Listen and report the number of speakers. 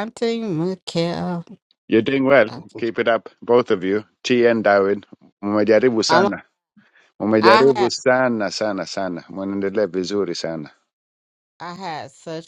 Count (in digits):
2